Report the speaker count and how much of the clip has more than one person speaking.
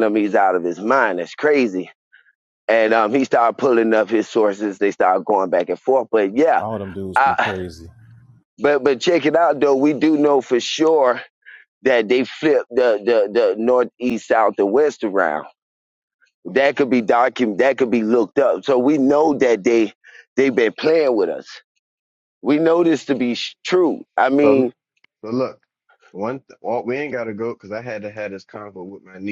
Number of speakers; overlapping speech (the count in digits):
3, about 2%